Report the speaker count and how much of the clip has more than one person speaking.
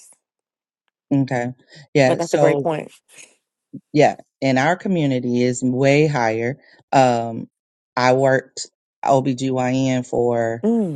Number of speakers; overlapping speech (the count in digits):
2, about 6%